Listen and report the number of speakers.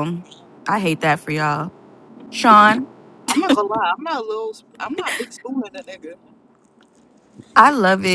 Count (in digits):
2